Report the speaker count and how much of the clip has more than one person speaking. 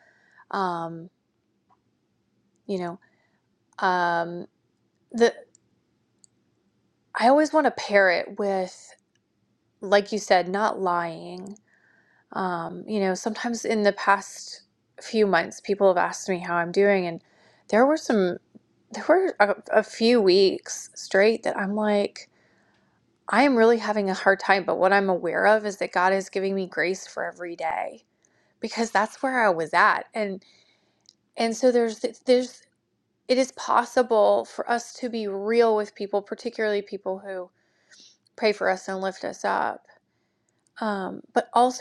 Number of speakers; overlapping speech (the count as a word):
one, no overlap